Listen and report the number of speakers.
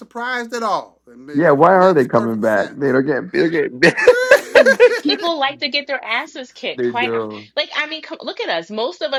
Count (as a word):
three